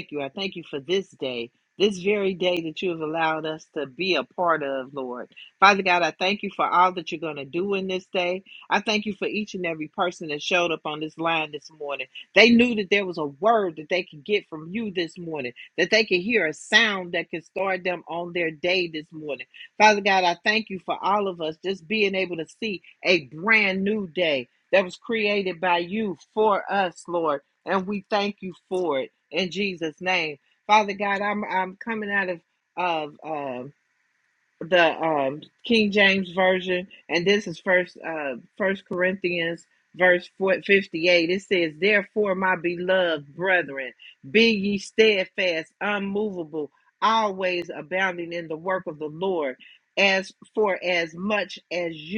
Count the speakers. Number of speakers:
1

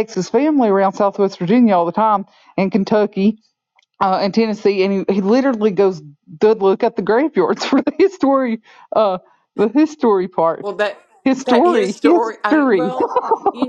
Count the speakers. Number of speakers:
2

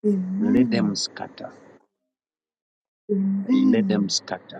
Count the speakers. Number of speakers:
2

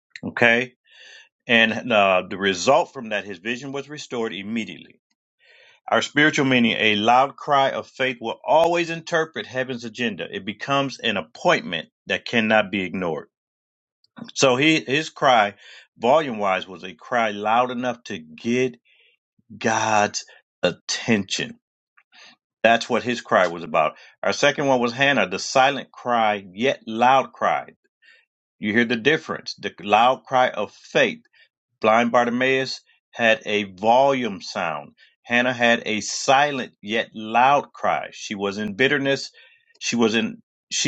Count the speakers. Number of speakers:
1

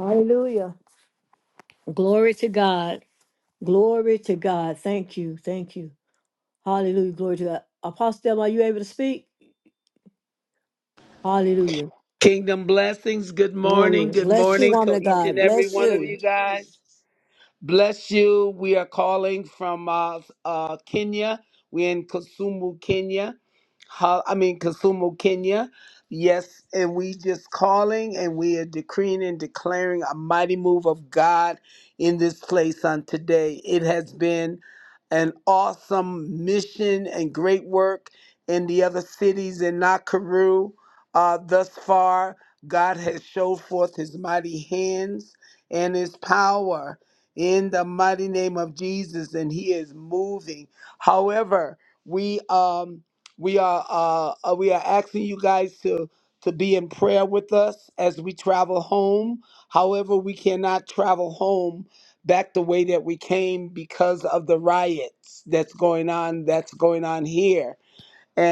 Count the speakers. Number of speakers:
2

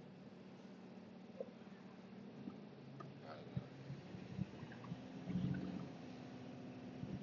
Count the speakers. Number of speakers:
0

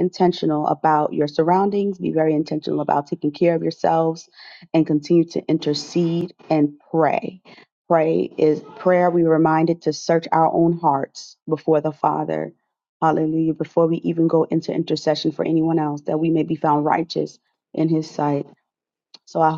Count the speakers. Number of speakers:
1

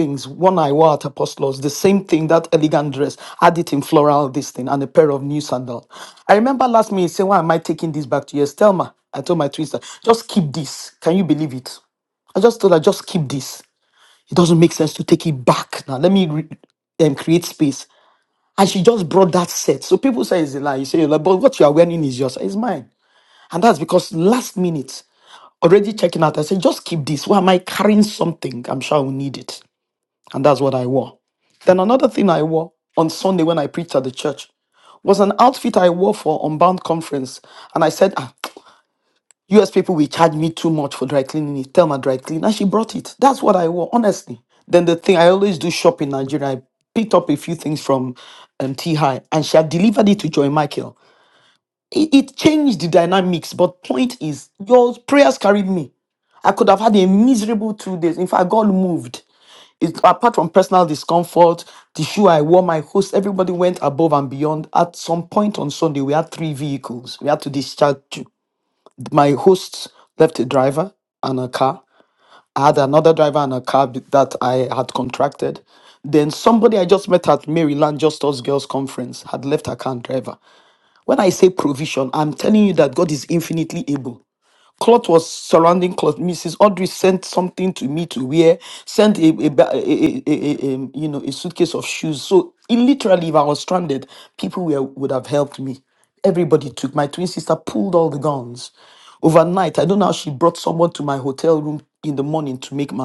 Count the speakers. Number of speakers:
1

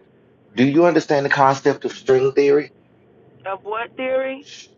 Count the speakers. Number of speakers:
2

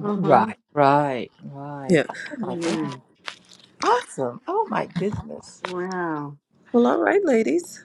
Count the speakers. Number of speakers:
3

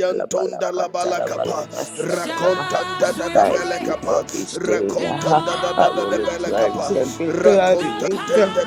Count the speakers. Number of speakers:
2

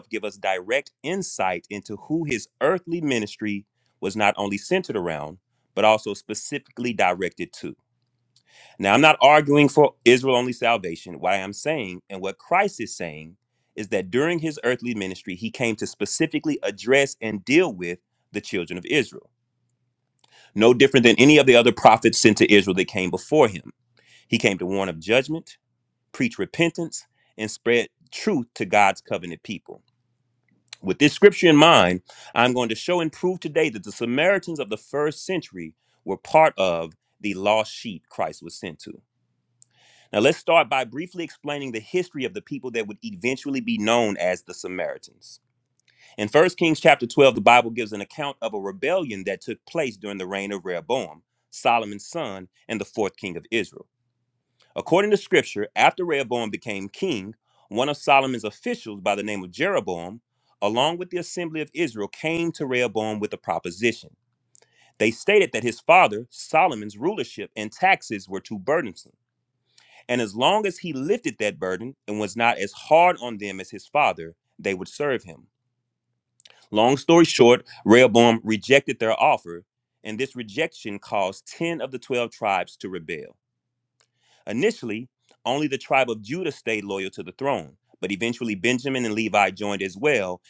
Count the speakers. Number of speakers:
1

